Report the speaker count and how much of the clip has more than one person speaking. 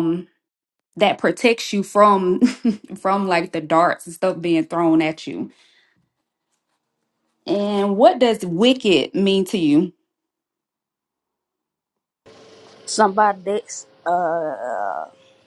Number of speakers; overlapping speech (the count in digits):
2, no overlap